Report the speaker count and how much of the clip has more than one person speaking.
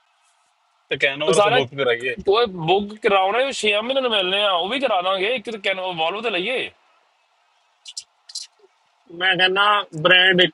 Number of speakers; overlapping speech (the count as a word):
three, about 3%